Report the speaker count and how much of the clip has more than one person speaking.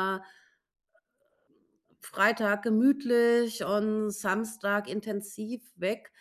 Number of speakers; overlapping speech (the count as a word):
one, no overlap